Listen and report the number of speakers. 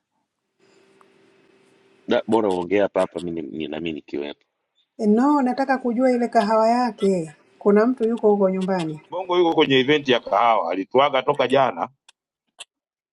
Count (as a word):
three